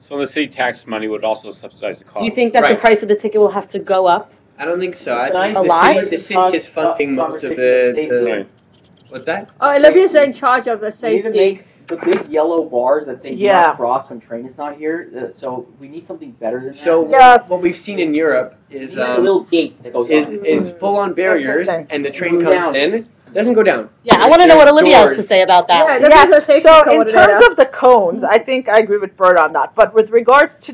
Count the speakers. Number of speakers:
six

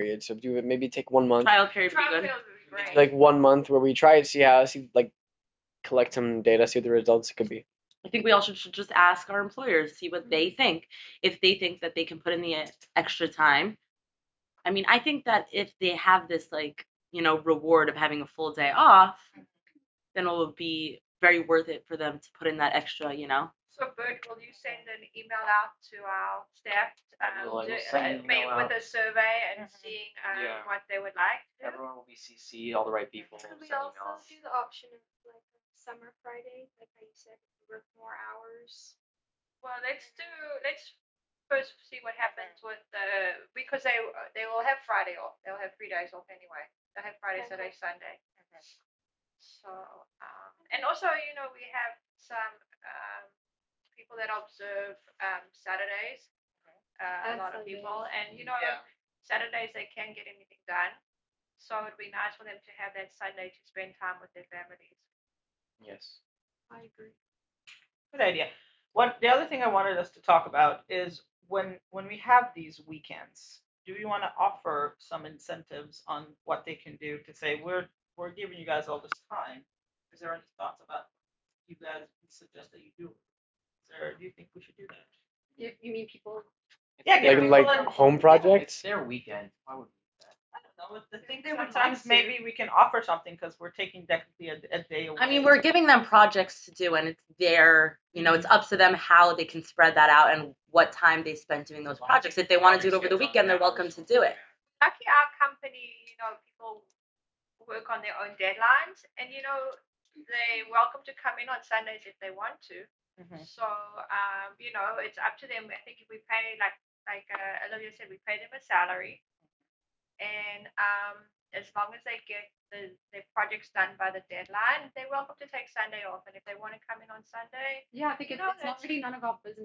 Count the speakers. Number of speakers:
seven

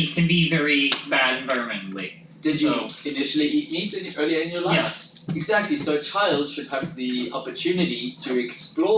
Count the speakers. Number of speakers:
two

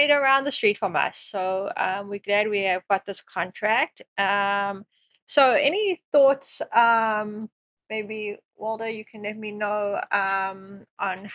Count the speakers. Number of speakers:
one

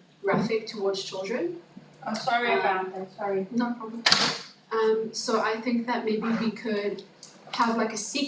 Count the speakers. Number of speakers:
two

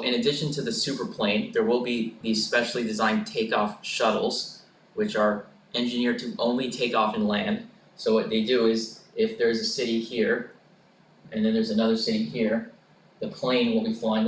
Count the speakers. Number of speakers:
one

